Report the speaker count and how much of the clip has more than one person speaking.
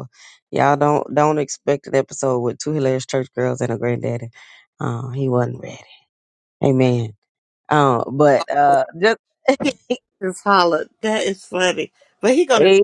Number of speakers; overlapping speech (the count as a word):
two, about 1%